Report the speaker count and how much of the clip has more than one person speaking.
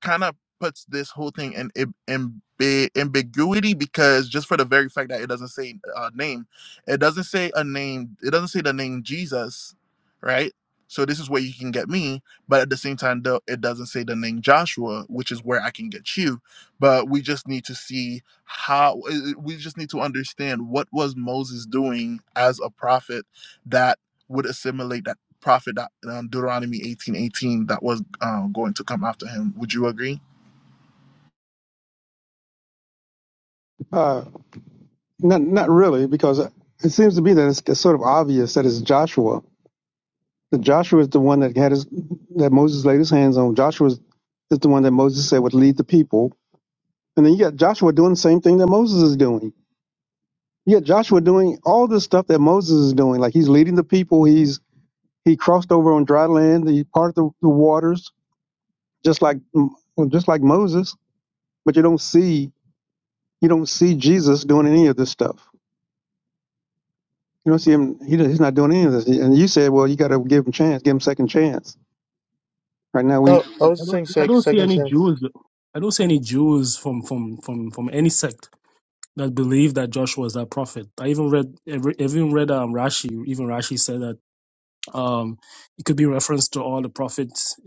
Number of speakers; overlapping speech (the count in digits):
3, about 1%